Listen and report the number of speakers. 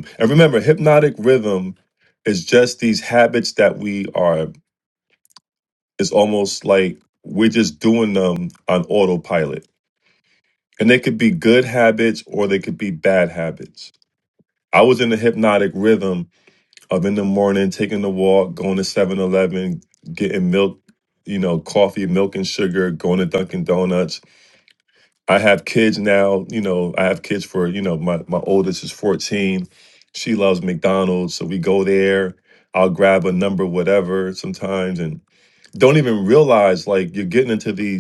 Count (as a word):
one